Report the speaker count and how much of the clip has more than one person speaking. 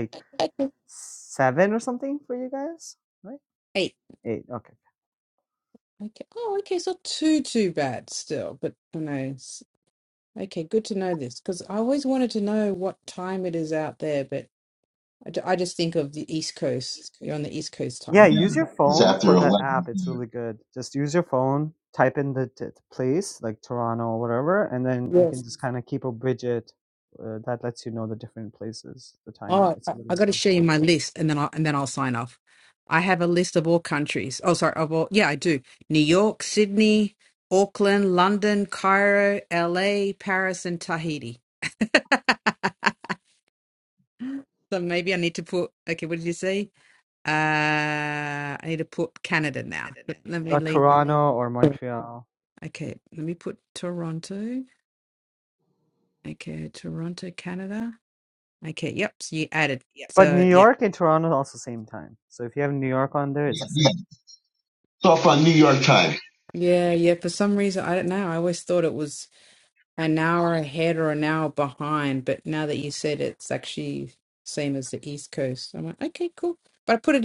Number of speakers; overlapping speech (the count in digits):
3, about 4%